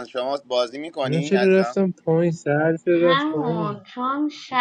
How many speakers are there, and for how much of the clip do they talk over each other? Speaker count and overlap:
three, about 31%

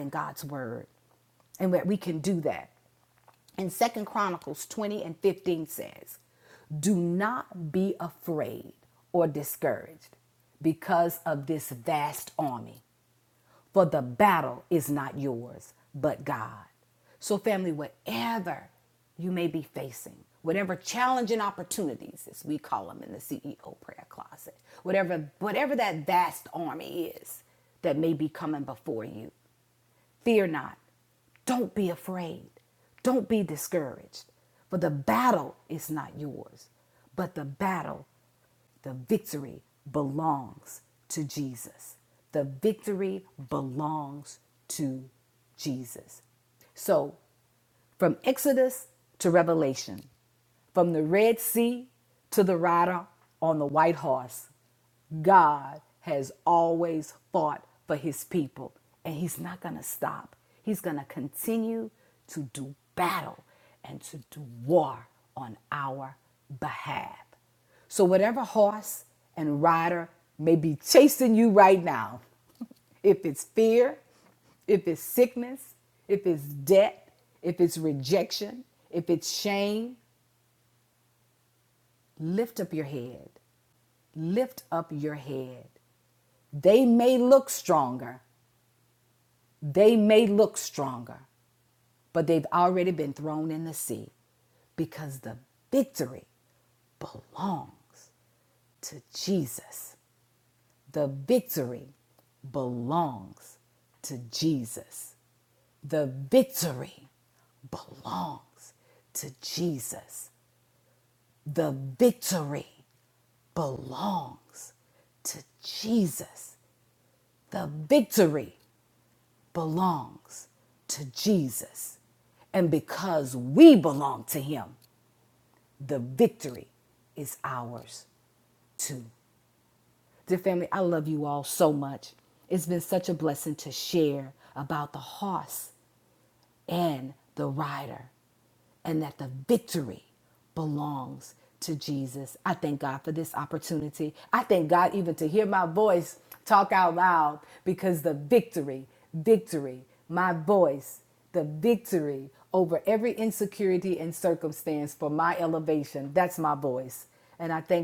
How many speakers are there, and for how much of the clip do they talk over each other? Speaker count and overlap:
one, no overlap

